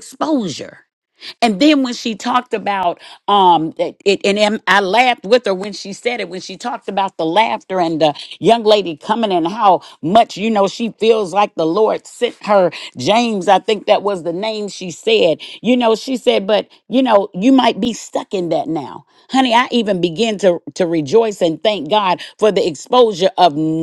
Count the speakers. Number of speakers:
one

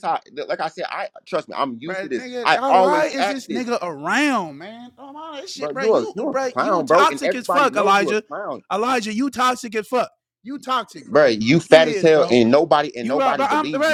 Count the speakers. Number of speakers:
two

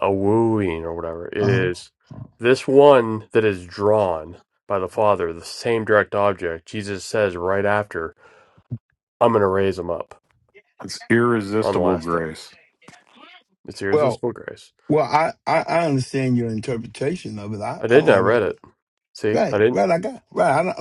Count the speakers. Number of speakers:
three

